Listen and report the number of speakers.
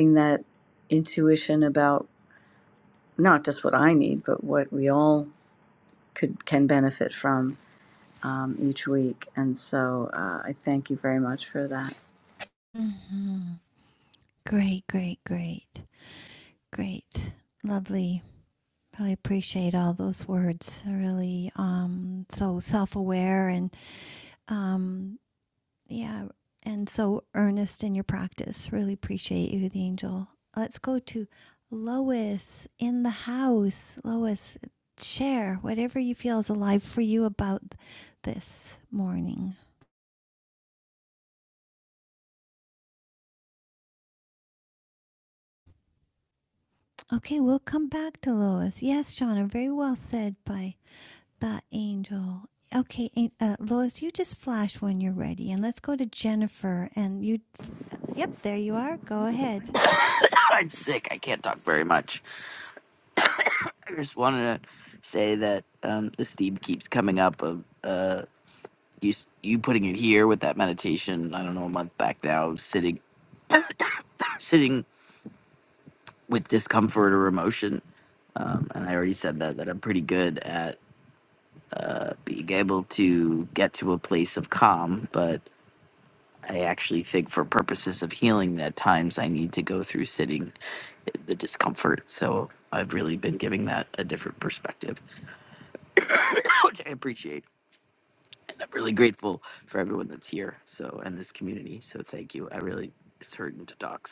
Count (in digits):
3